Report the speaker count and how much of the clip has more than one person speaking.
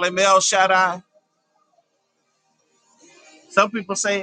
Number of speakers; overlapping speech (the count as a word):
one, no overlap